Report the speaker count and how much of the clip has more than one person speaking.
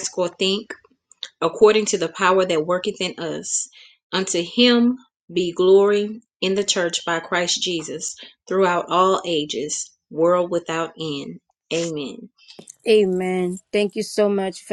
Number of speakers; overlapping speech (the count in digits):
2, no overlap